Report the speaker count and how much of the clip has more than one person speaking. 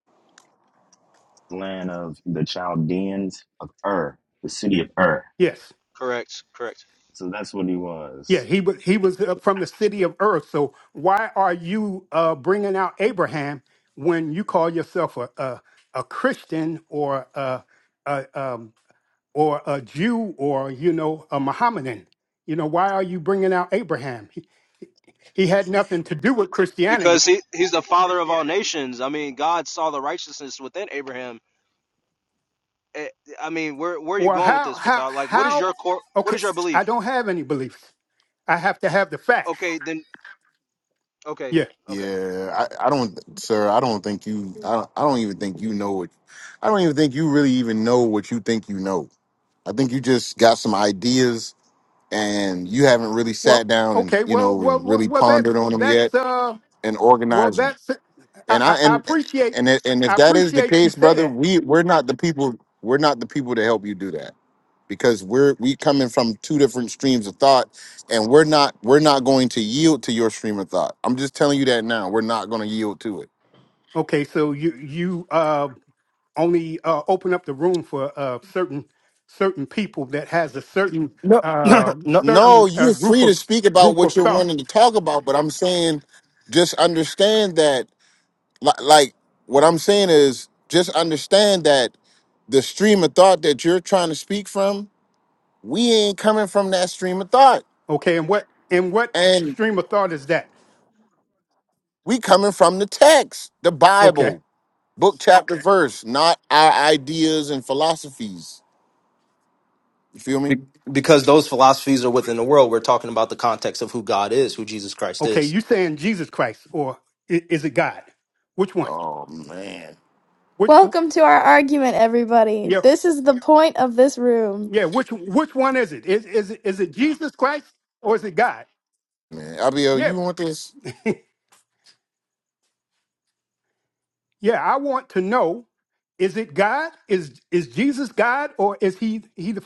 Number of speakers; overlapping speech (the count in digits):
5, about 8%